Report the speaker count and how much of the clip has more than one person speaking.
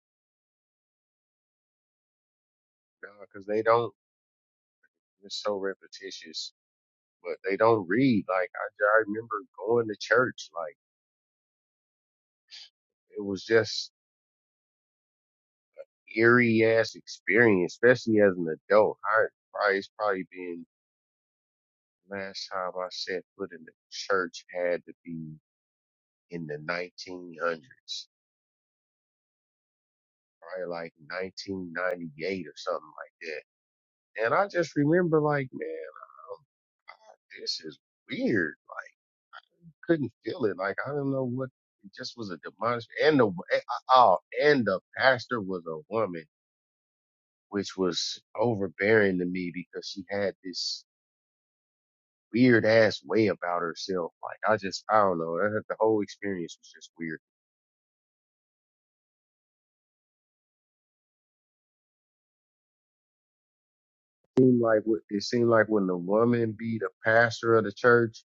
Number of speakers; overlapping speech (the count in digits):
1, no overlap